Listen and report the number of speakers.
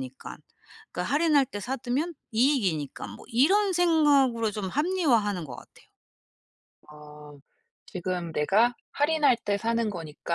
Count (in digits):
2